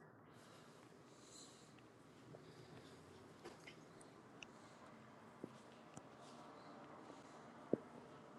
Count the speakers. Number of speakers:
0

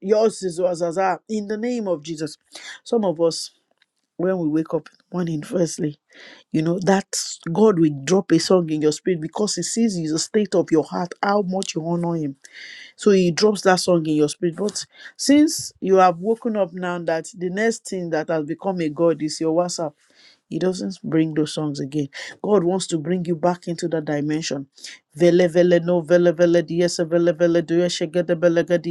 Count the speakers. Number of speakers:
1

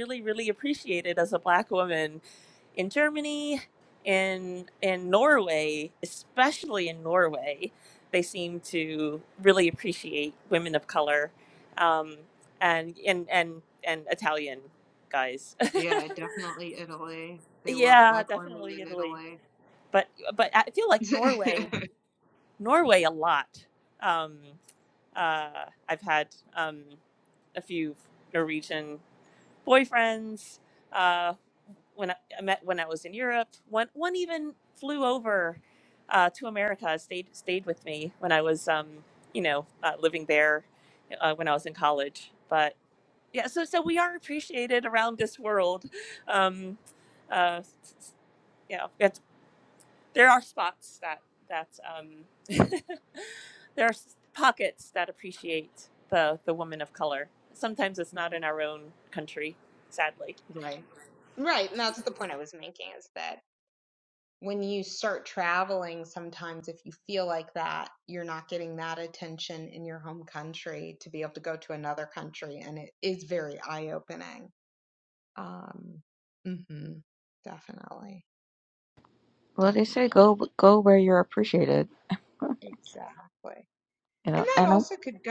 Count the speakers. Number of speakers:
3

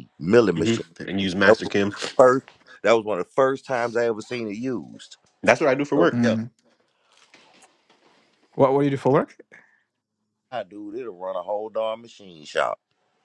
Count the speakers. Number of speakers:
3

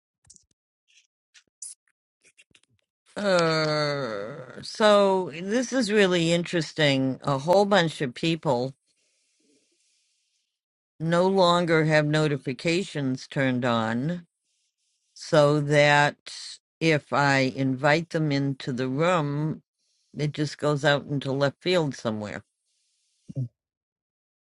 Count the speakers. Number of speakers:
1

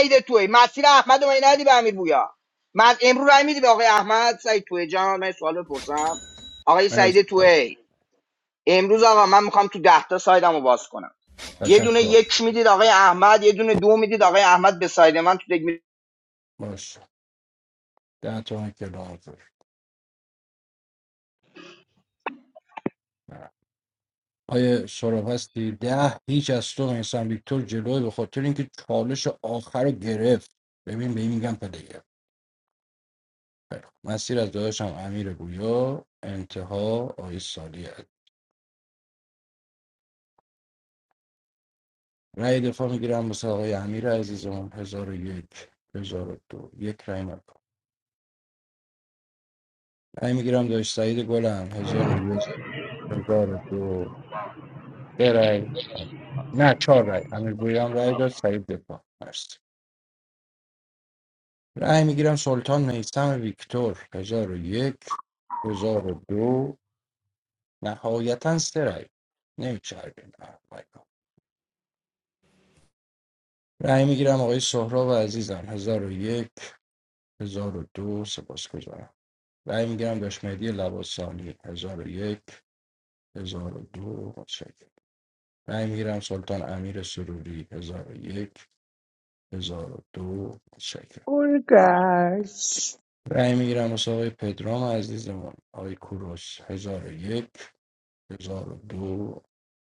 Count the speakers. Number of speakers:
3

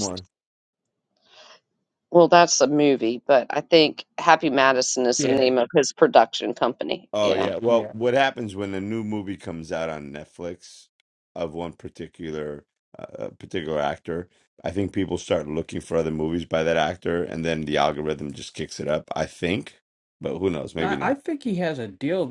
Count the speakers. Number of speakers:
3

